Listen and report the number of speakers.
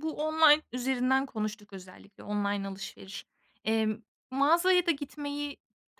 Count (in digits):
1